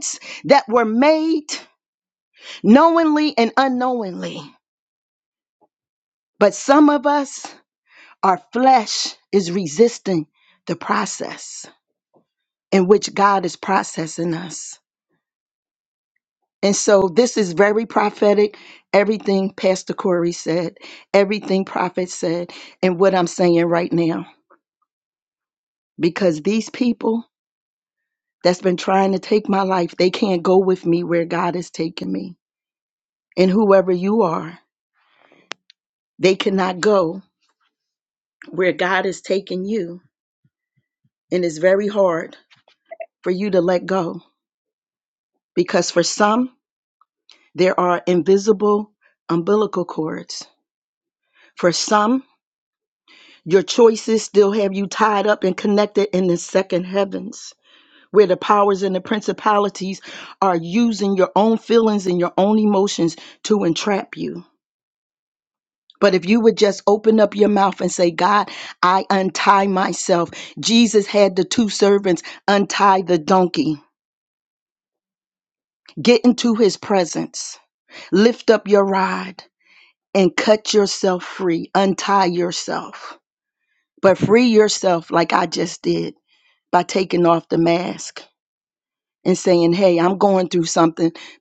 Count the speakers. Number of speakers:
1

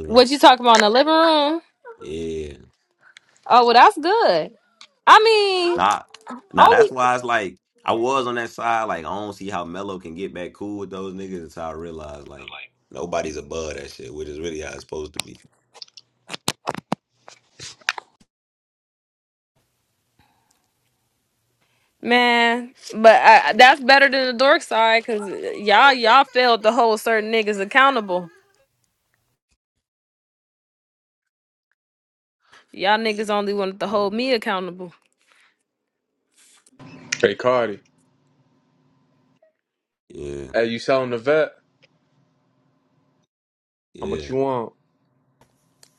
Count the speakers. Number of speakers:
3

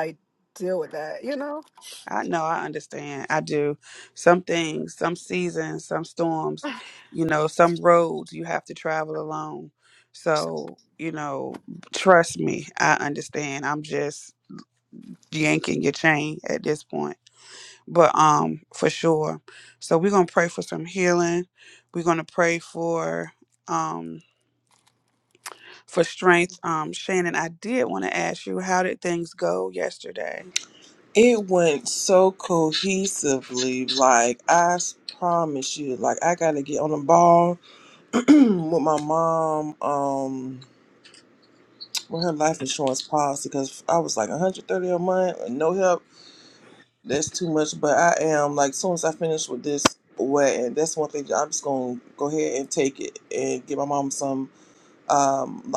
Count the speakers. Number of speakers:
3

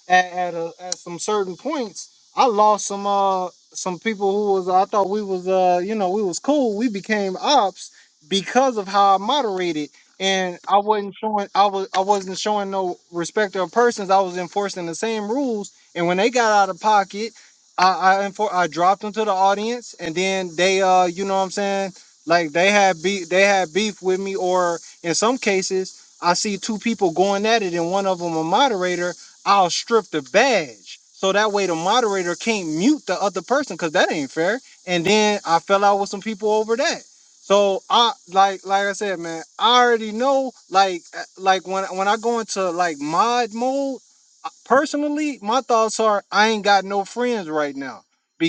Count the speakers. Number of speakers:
1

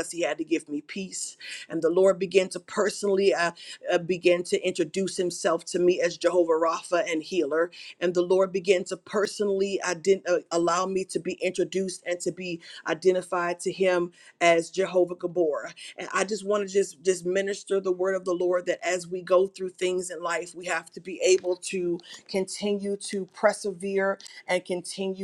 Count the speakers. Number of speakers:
1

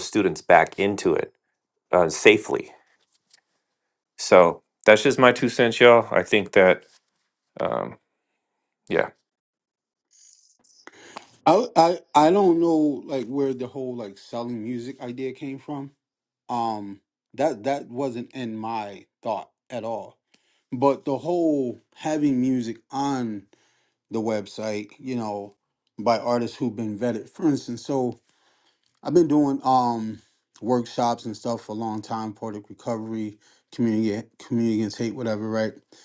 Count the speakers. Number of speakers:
2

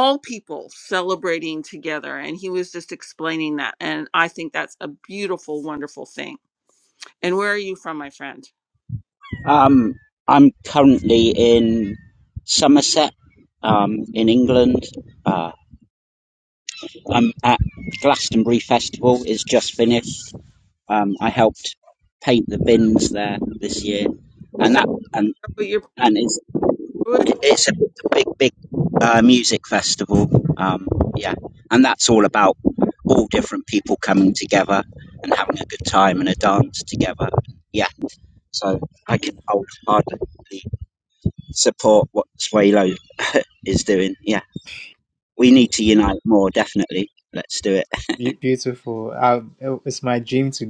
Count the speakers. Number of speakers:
3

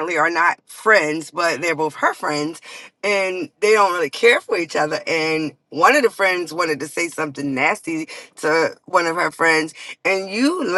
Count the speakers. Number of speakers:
1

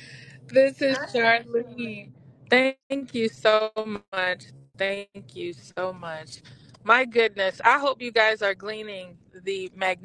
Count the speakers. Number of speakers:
1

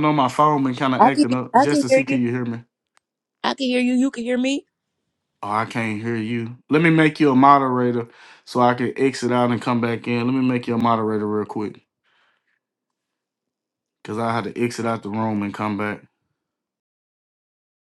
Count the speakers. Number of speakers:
2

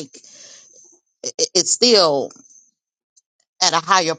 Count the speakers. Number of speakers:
1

